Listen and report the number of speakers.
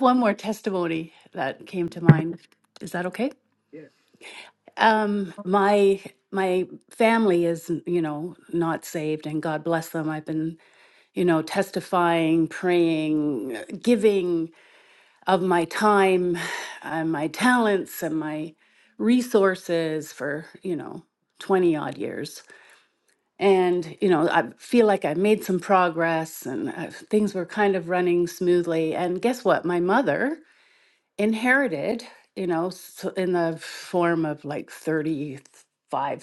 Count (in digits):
1